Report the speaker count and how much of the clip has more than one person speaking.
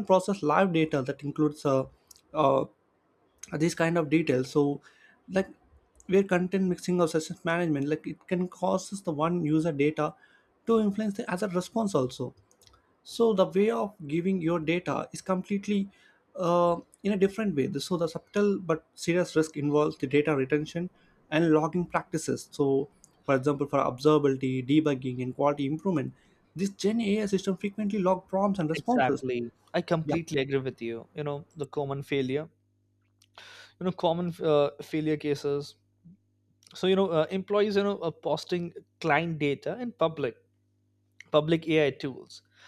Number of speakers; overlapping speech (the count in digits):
2, about 1%